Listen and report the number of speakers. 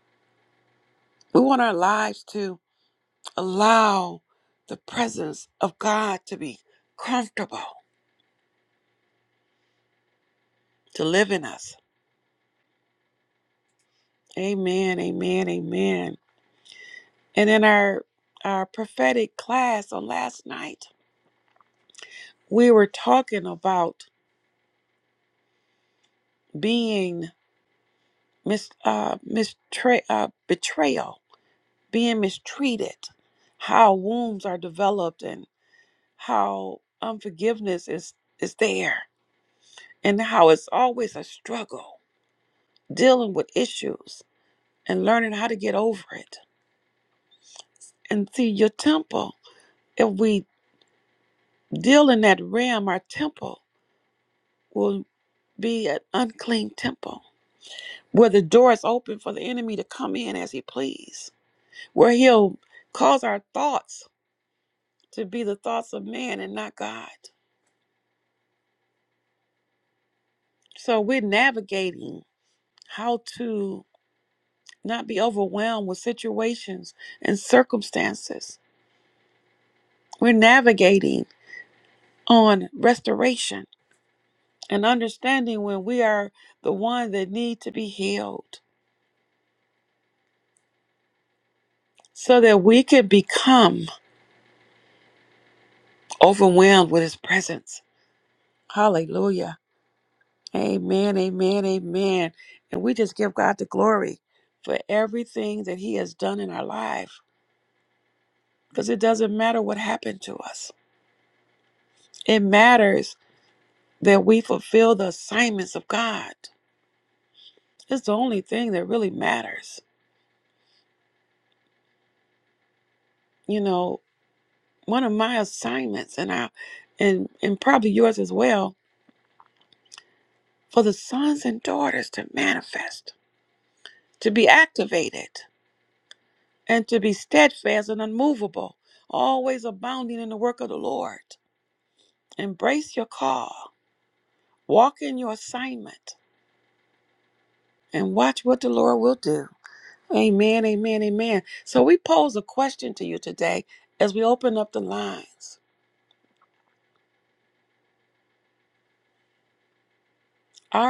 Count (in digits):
1